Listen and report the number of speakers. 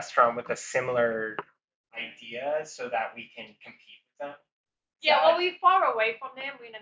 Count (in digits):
2